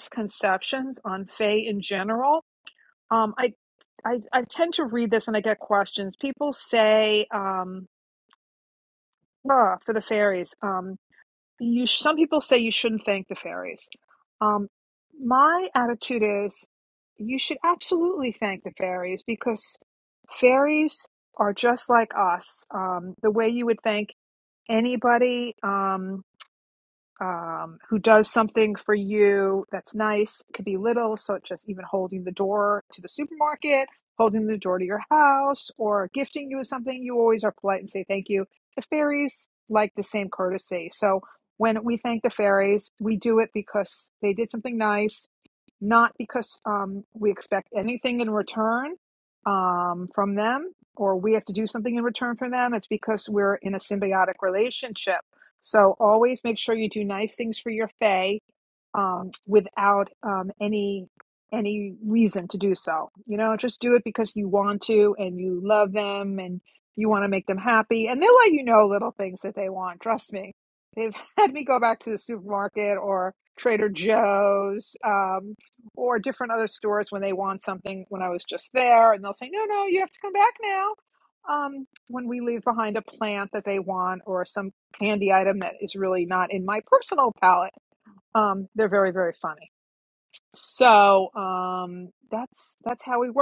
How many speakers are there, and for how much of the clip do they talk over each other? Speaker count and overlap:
1, no overlap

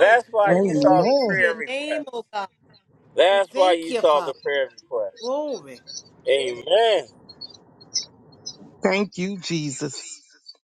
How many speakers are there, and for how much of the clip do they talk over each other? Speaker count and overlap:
3, about 29%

